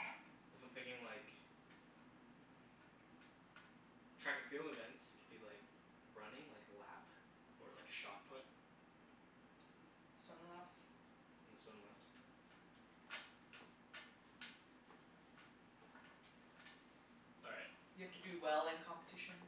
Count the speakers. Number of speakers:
two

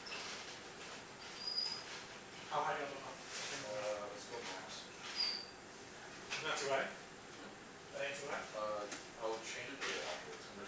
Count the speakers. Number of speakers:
two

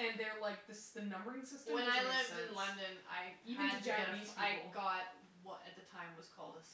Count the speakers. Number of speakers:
two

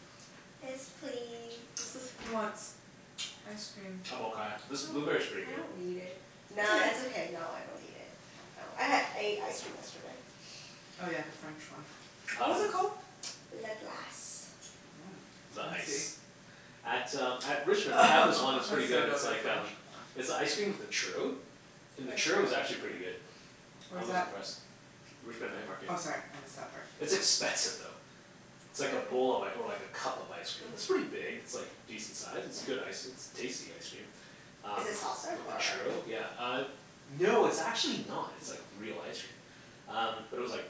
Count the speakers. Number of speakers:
three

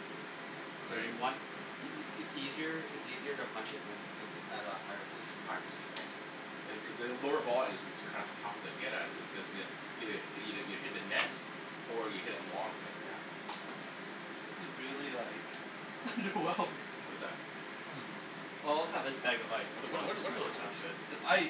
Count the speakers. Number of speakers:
four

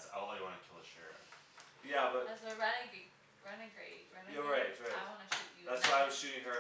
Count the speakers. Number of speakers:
three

